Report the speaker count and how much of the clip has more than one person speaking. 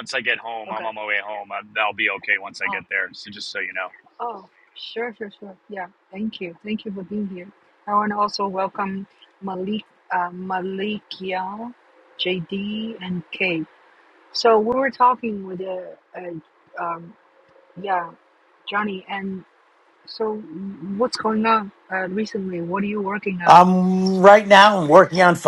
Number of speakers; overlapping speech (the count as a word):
three, about 2%